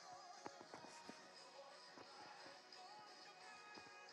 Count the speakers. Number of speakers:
0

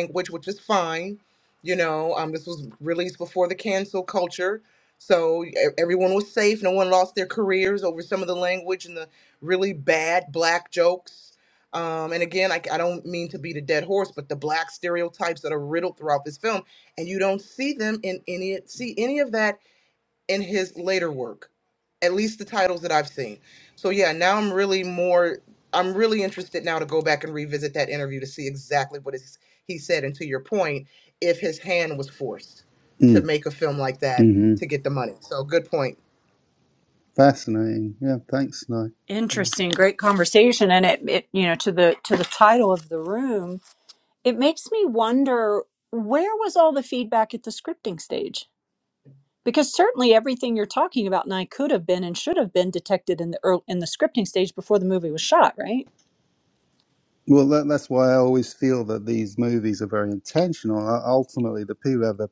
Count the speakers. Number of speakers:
3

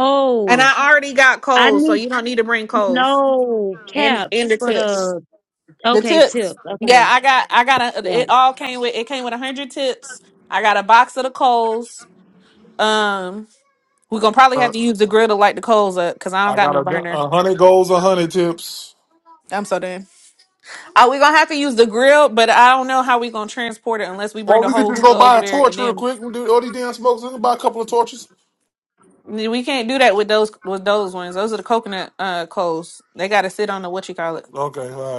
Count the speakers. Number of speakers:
3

